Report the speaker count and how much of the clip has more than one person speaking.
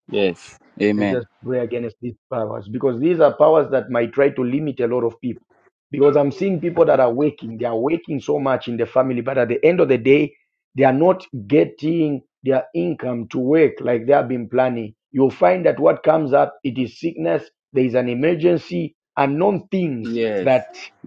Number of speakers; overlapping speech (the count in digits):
2, about 2%